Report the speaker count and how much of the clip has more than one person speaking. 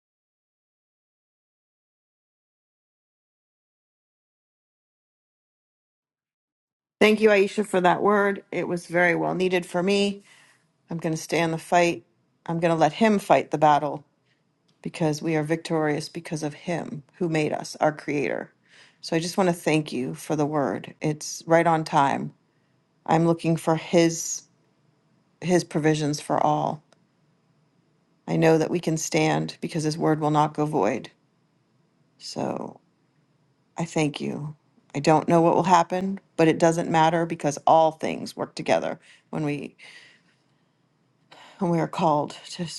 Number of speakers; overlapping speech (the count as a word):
one, no overlap